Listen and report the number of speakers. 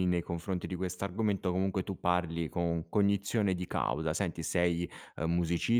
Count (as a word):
one